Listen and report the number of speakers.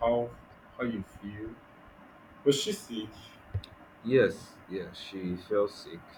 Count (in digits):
2